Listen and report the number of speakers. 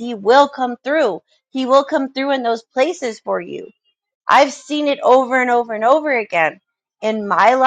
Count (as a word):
one